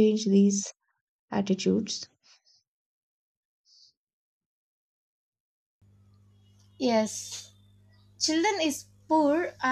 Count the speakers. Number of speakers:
2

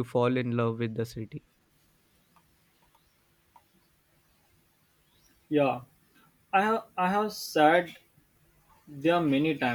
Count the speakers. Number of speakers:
2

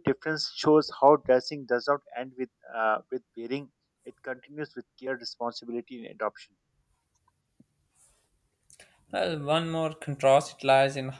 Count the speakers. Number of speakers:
2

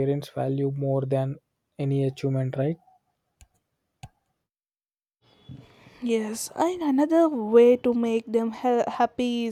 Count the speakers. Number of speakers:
2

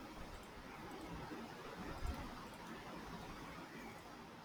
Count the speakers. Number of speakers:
0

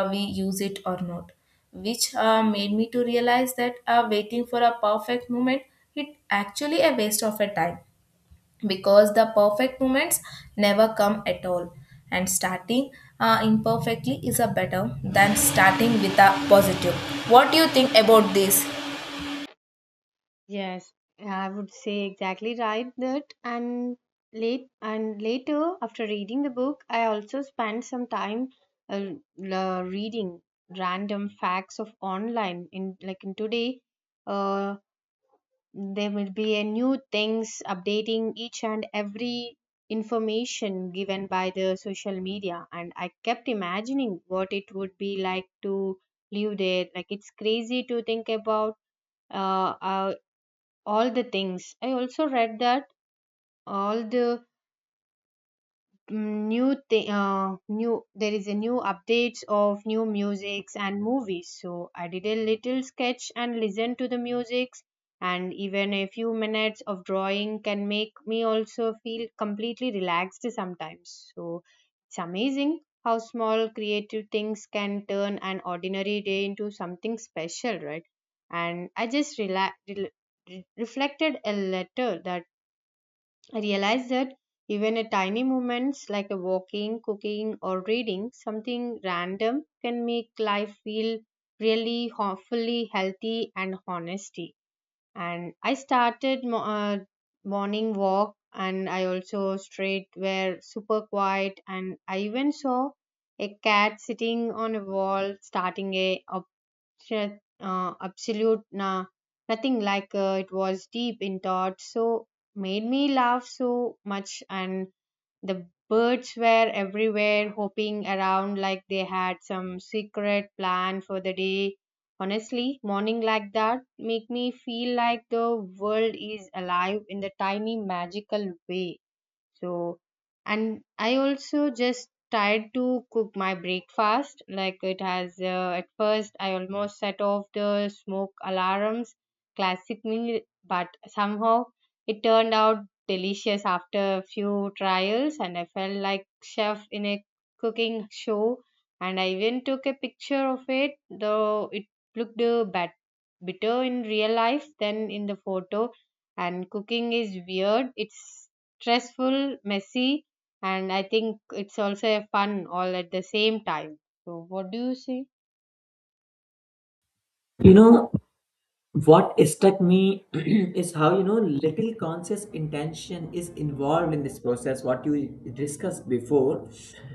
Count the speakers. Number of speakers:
3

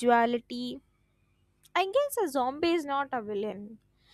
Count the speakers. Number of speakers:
1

